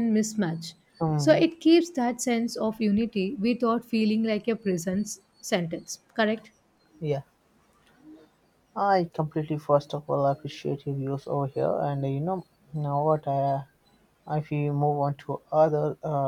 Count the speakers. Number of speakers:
2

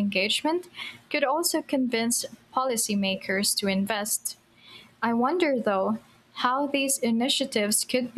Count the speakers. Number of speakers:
1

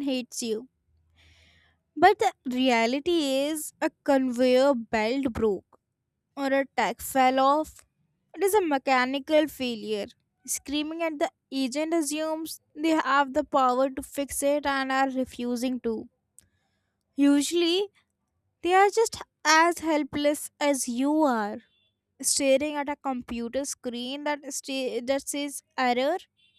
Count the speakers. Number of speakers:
1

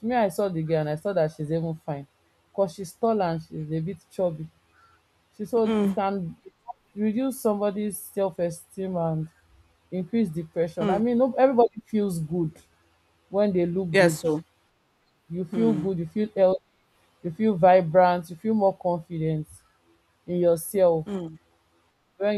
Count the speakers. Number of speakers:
2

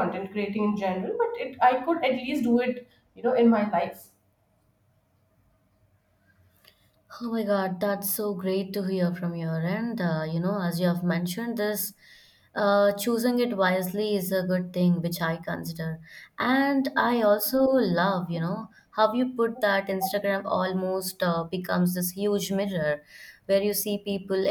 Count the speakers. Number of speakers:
2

